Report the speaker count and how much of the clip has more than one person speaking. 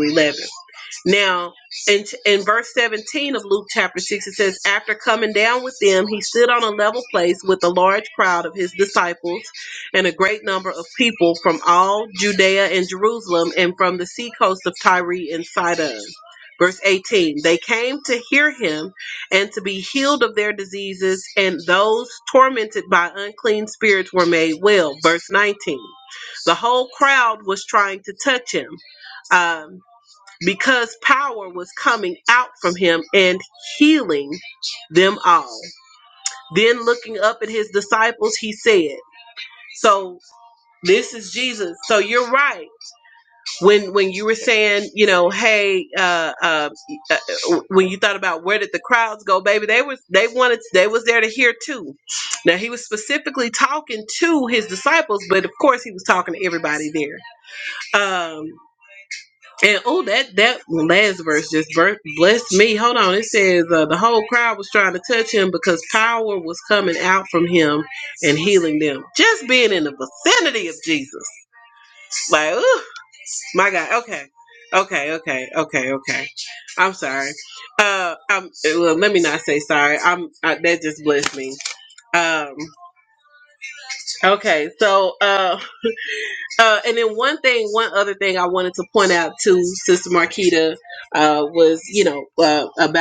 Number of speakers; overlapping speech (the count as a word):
one, no overlap